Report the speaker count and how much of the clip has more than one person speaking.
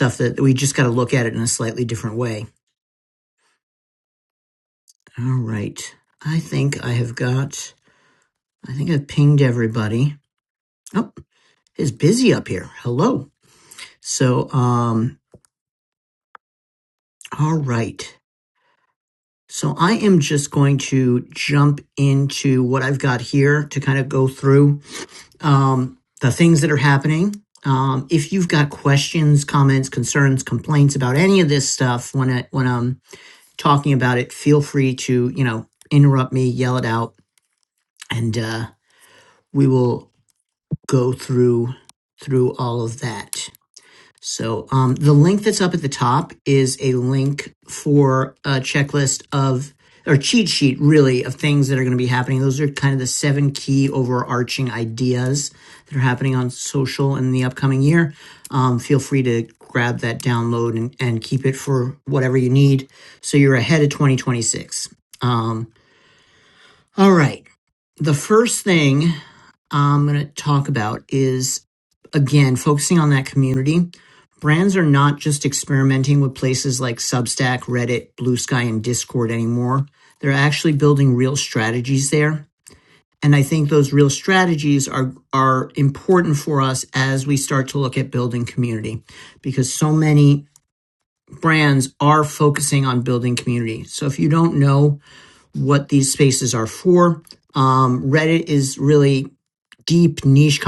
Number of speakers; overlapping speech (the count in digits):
1, no overlap